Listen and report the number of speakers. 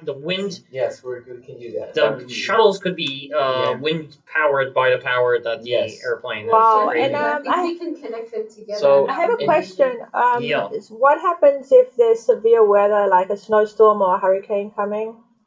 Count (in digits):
4